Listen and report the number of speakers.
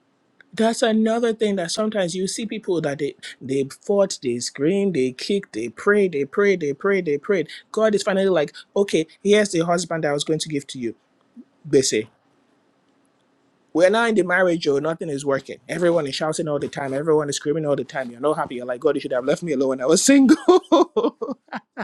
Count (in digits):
1